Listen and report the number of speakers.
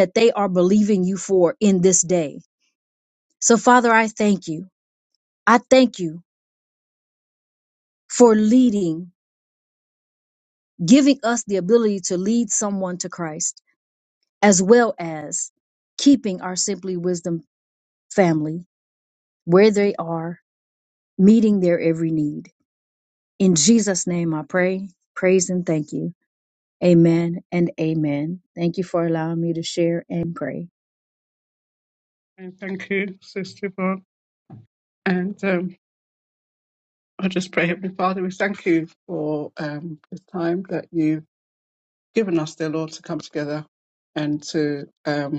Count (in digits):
2